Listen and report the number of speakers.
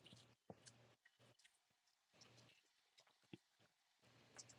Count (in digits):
0